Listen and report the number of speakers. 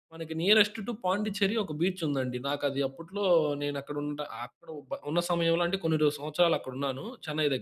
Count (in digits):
1